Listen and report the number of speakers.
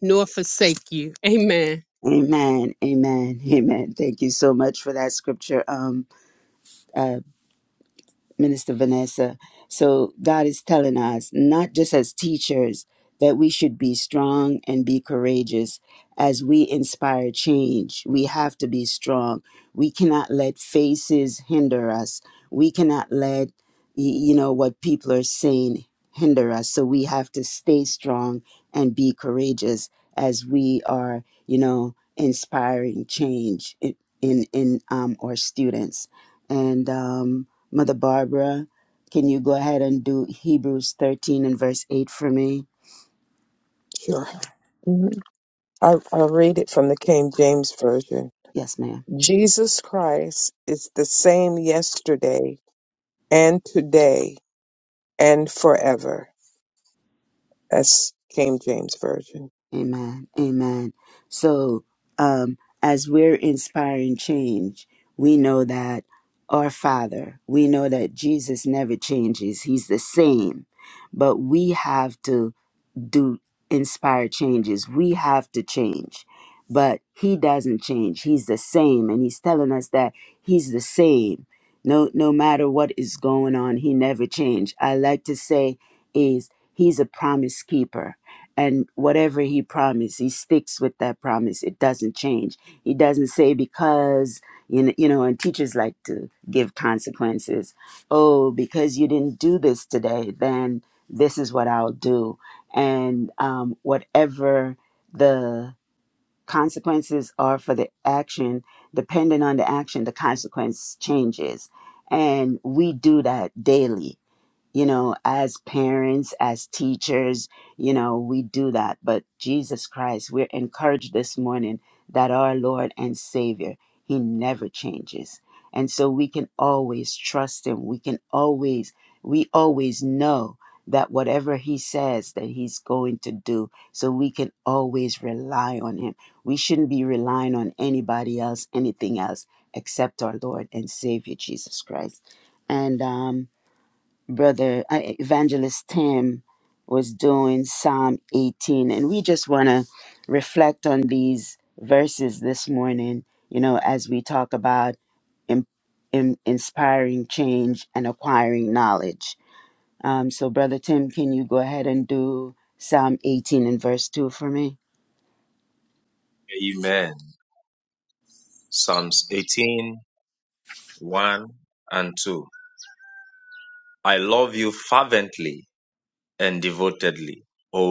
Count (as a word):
four